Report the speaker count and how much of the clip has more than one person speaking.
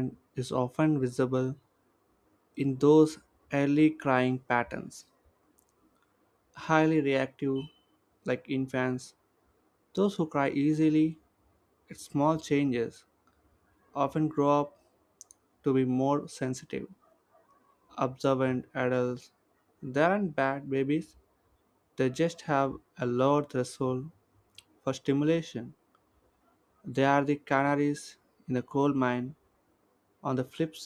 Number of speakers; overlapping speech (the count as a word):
one, no overlap